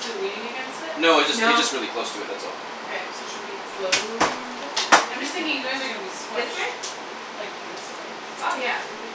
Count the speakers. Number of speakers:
3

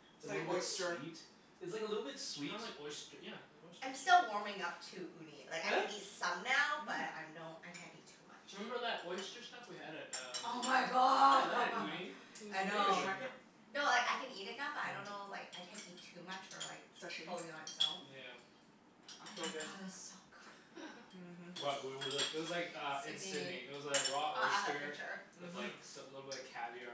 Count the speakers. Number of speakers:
4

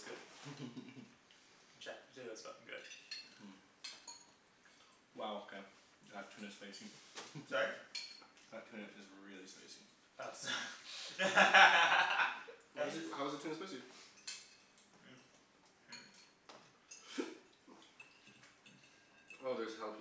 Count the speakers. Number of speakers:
3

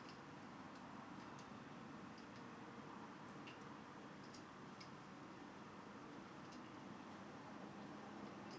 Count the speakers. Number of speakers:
0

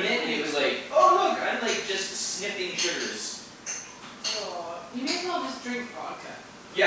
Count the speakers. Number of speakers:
2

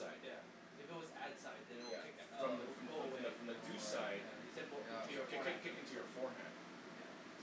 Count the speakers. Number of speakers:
3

